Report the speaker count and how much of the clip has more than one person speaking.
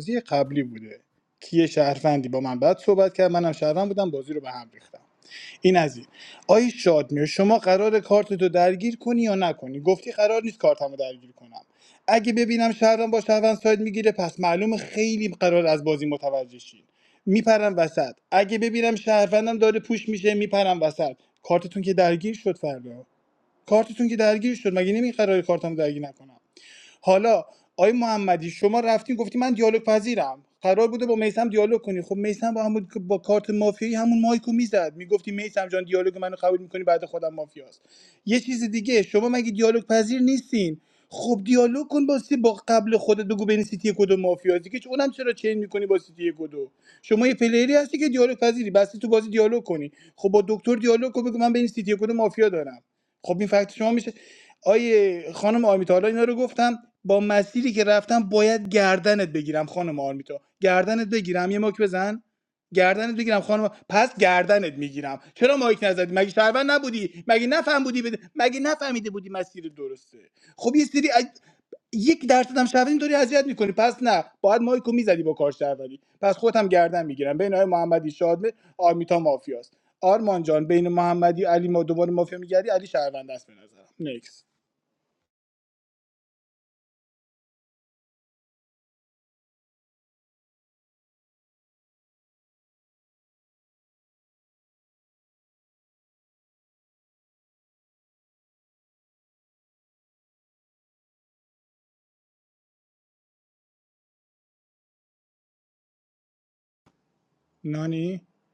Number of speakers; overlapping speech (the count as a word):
one, no overlap